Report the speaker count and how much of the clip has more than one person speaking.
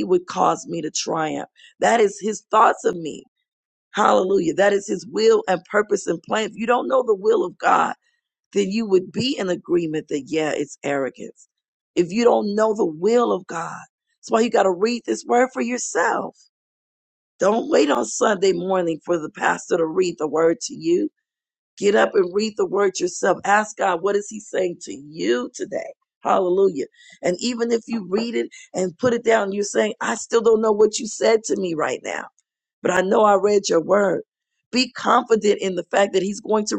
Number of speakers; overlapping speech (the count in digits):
1, no overlap